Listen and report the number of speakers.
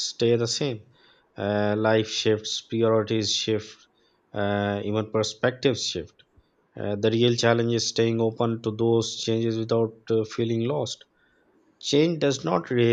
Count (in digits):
1